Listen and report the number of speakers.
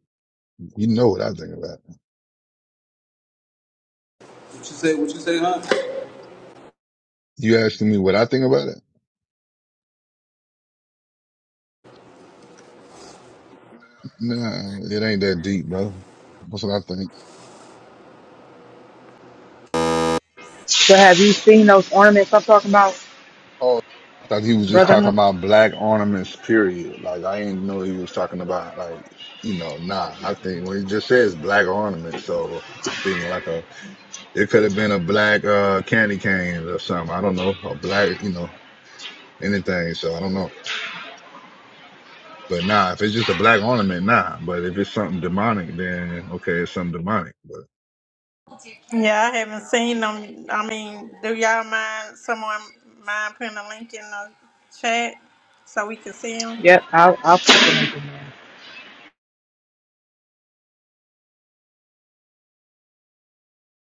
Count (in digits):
4